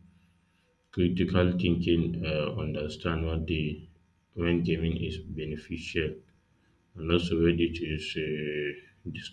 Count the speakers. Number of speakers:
1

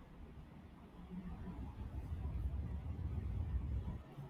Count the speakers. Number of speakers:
0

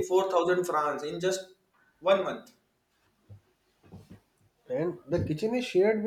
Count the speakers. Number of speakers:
2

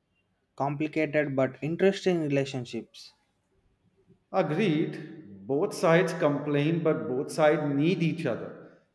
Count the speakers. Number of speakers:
2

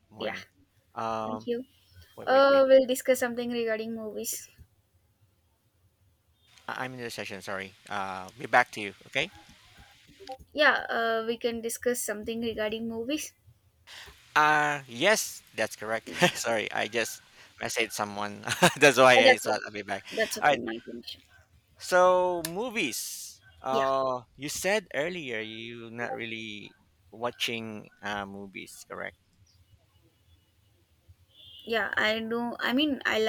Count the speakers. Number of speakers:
2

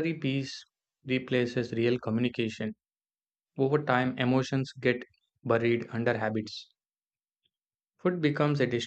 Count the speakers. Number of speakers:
1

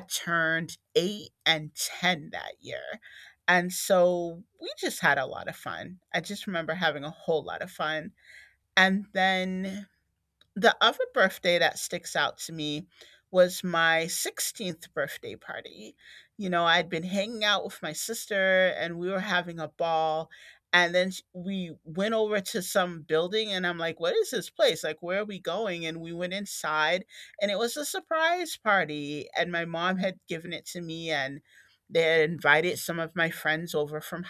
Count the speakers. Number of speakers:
1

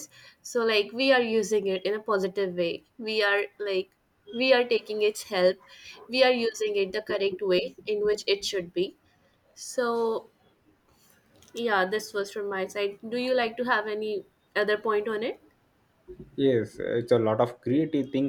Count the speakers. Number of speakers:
2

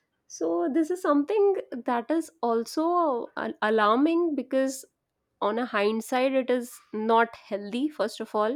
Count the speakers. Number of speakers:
1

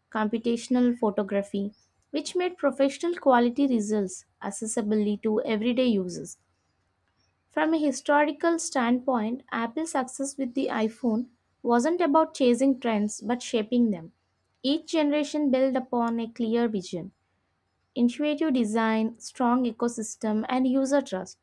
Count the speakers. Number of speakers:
1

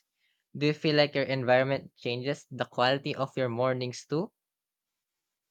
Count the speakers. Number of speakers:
1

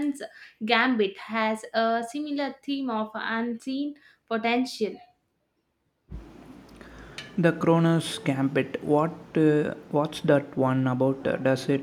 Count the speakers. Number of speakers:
2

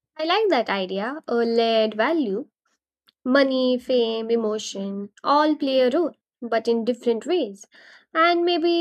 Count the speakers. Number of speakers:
1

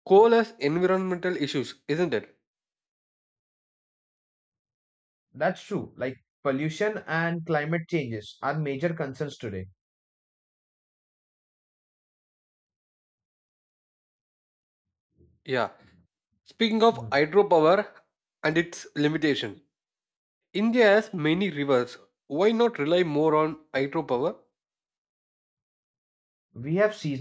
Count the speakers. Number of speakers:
2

